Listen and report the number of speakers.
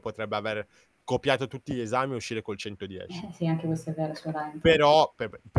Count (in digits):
2